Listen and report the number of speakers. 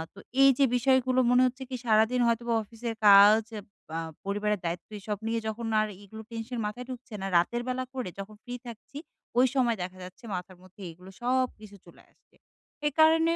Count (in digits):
1